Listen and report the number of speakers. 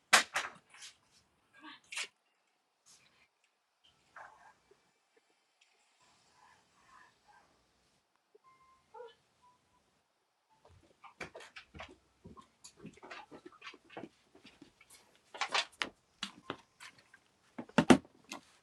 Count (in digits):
0